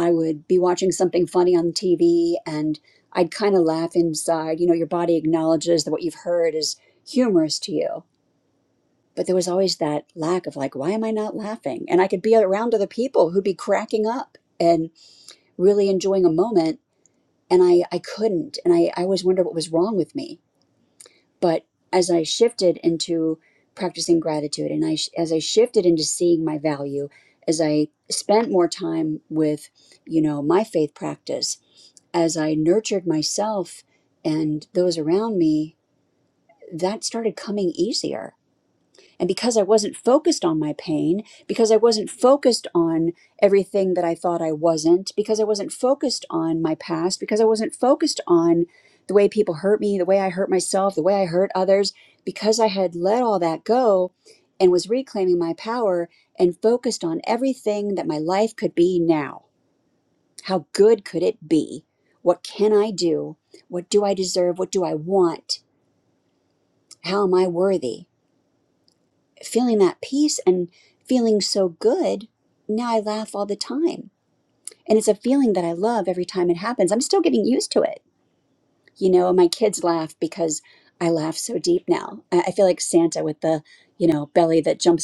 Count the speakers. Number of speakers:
1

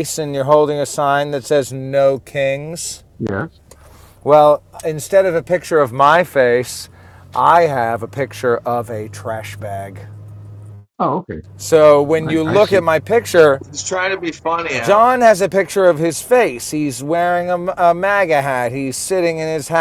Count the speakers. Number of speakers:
3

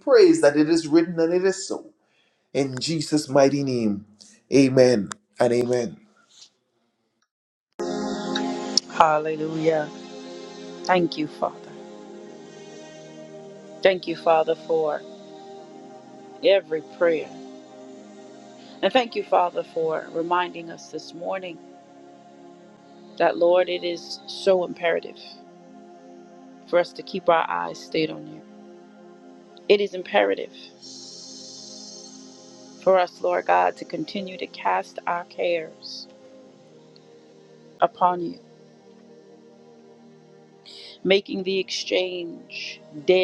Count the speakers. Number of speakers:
2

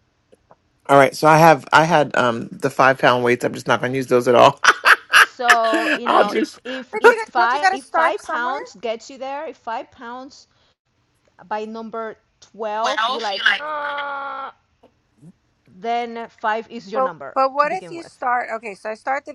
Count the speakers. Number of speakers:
3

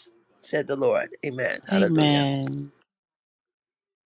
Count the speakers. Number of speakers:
2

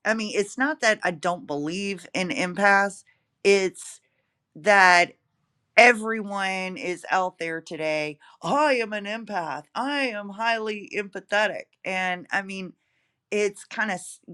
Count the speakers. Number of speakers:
1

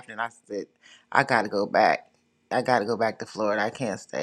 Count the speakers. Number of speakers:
1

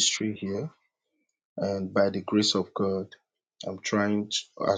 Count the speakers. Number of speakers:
1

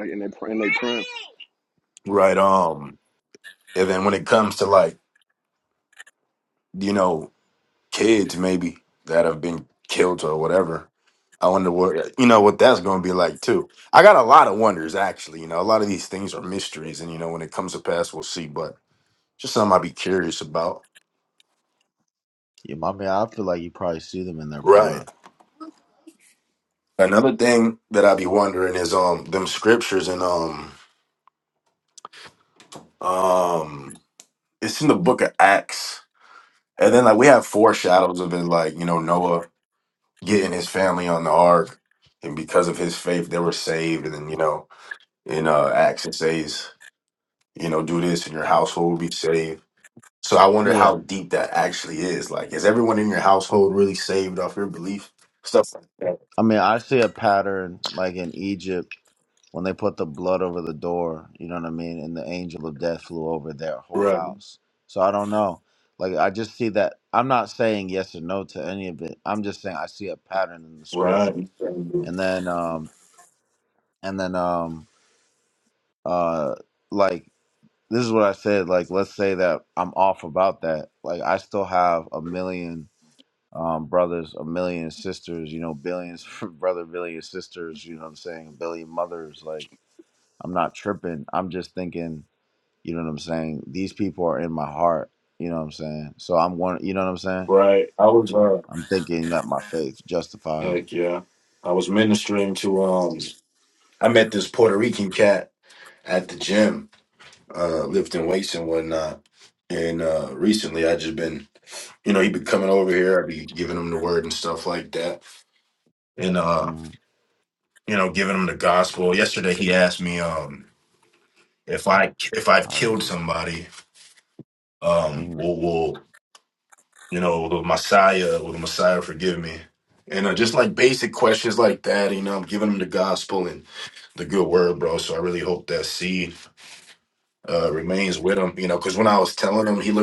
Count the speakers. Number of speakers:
3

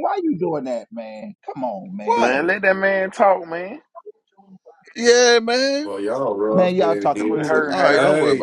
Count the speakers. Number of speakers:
4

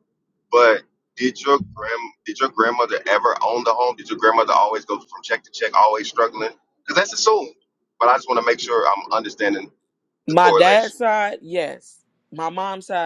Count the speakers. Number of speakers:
2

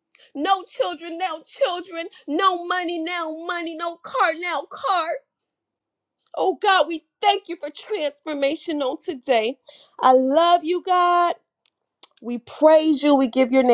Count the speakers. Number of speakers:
1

